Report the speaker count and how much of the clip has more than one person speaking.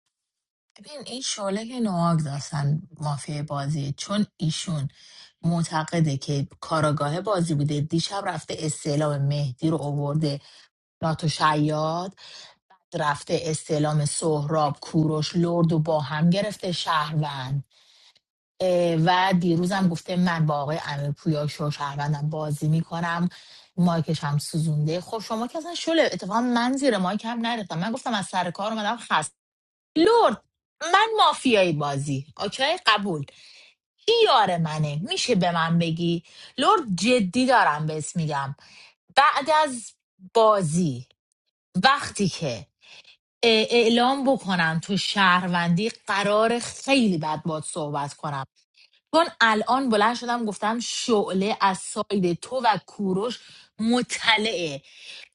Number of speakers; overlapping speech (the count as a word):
one, no overlap